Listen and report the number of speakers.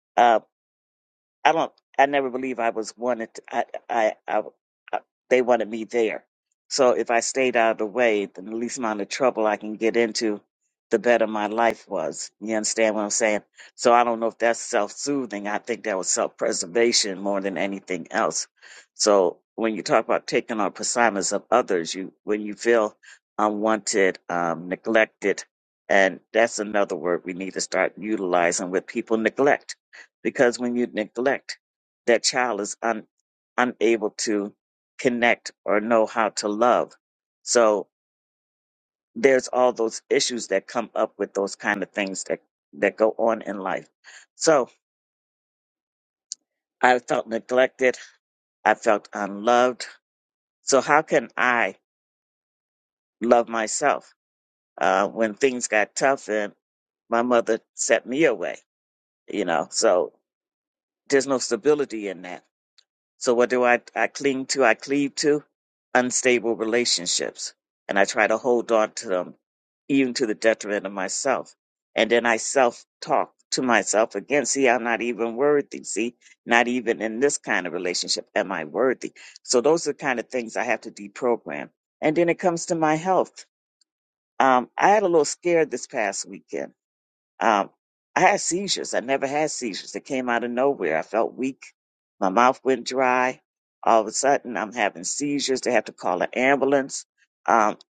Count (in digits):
1